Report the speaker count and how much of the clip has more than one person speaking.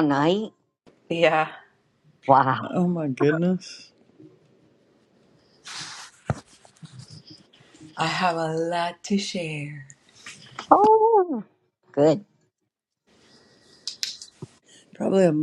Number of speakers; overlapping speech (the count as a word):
three, under 1%